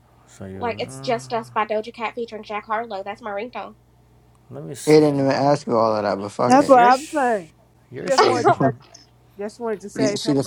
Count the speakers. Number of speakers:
4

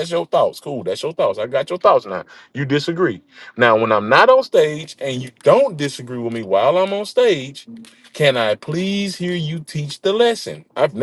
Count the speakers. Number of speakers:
1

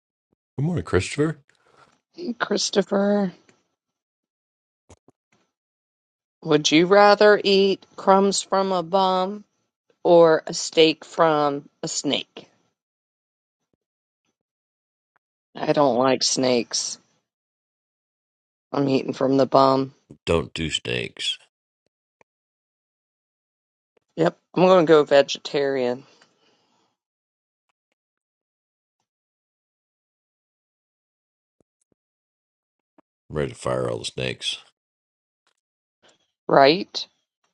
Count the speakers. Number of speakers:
2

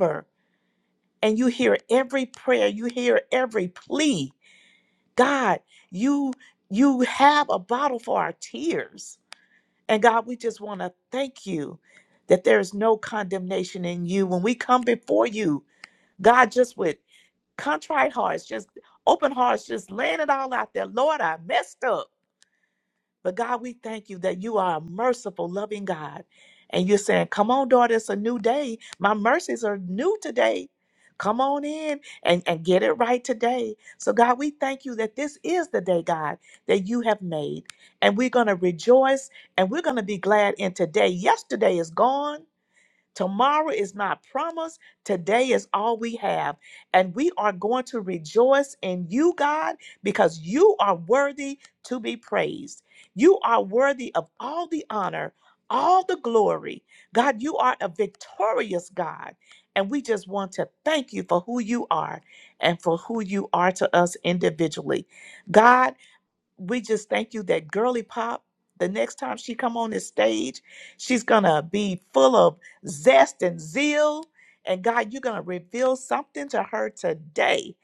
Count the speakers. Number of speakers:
1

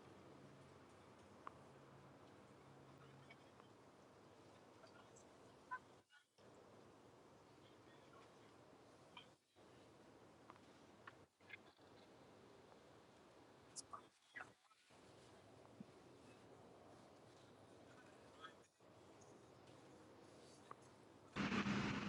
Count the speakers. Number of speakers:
0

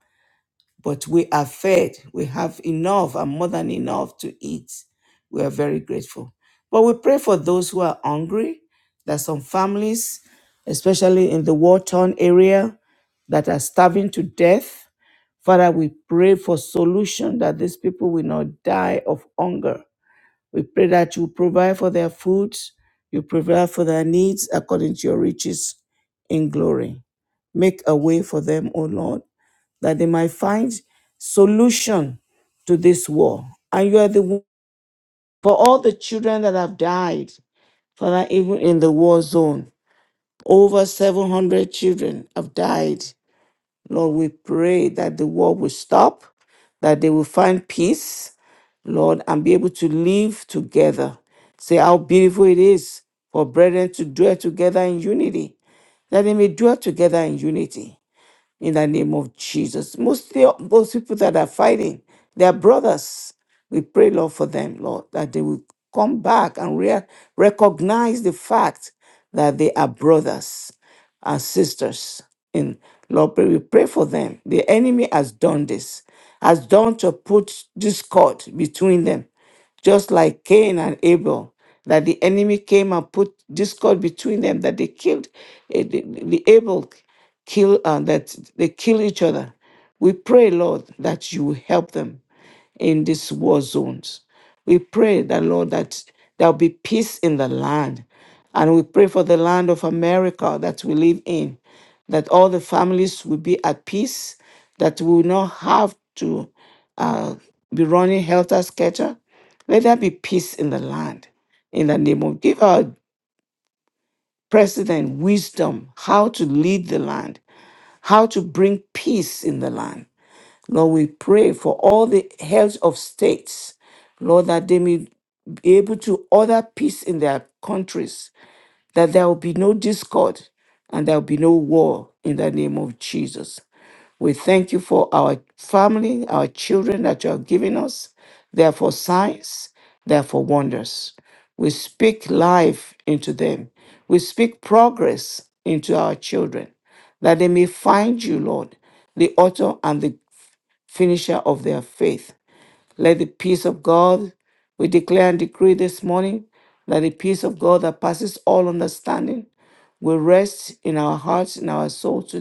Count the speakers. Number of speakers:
1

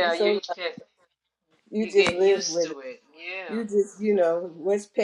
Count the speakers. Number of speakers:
2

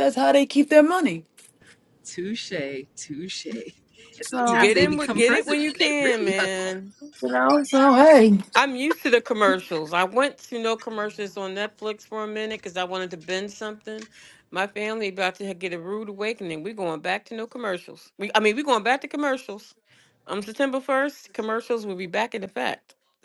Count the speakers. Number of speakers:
3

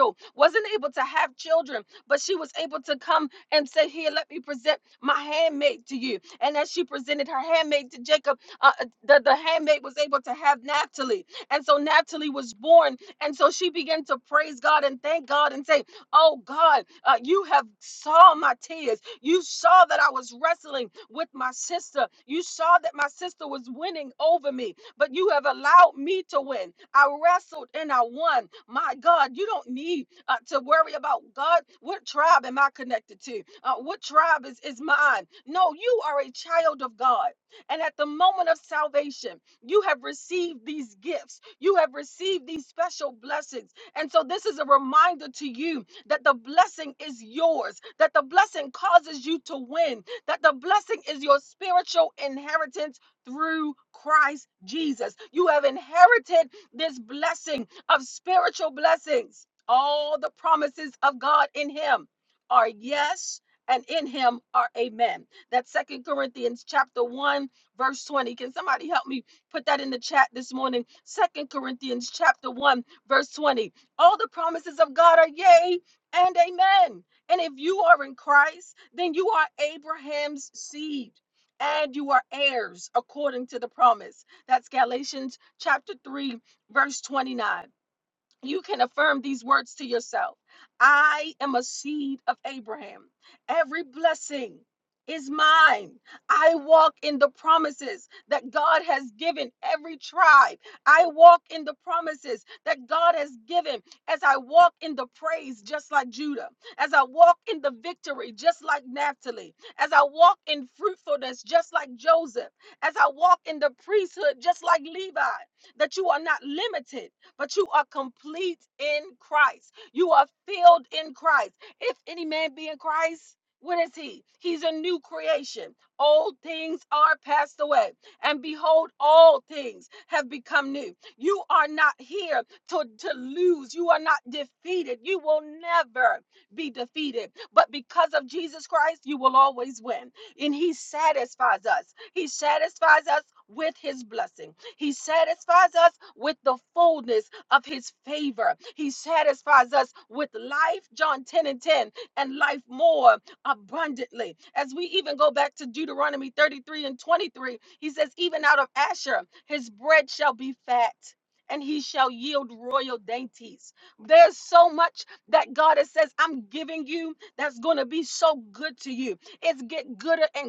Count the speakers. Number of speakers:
1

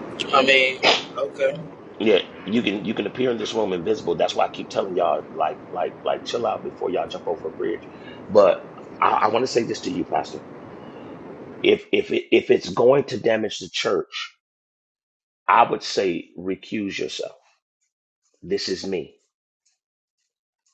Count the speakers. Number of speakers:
2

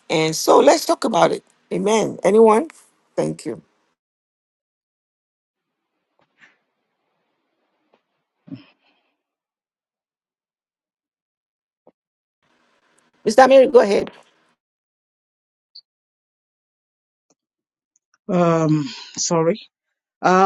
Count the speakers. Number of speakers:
2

